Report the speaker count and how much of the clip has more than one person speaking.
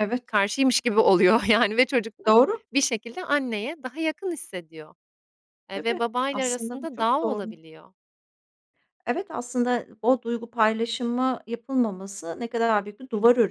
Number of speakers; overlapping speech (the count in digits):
2, about 11%